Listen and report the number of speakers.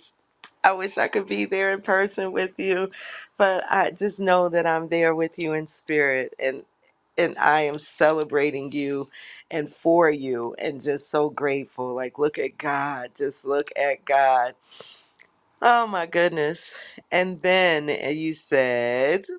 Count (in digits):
1